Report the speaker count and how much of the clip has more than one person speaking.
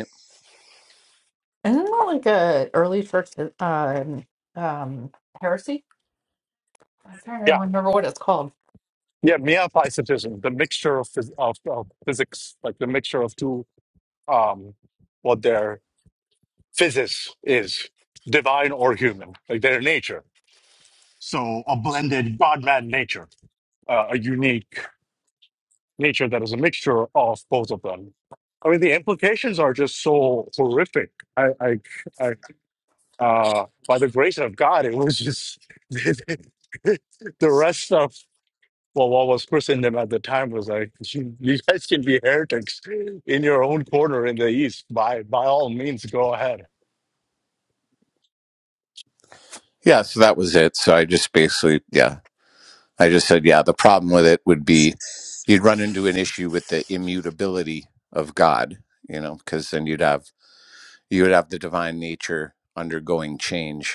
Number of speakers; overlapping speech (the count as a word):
three, under 1%